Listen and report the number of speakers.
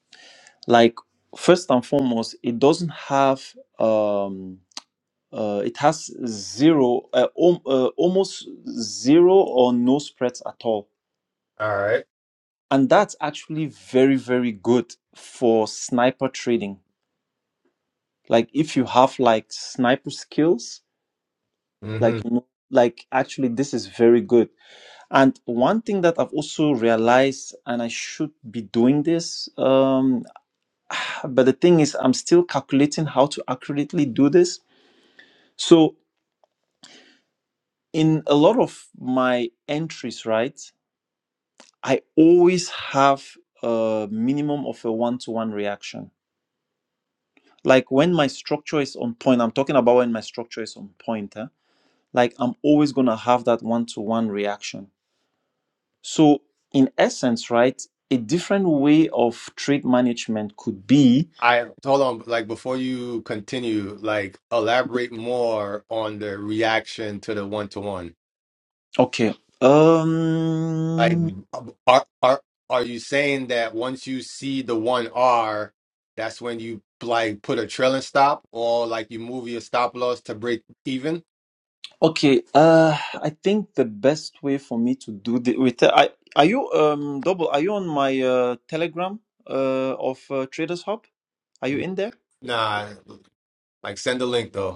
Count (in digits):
2